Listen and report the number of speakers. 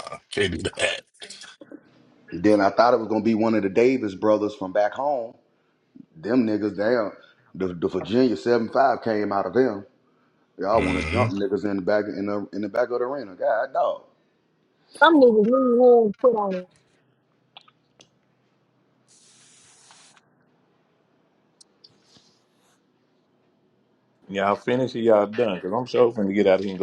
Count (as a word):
four